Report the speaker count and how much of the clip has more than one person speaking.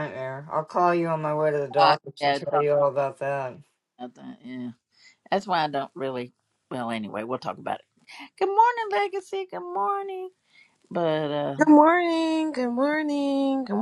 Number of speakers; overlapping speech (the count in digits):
3, about 7%